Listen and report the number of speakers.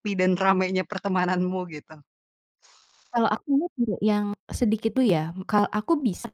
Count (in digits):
2